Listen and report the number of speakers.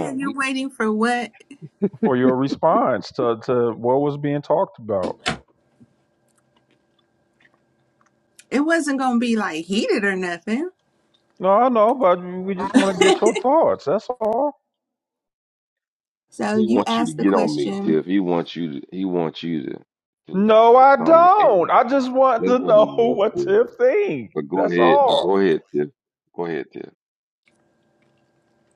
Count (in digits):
3